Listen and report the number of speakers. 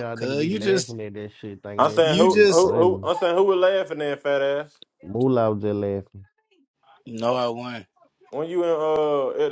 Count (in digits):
3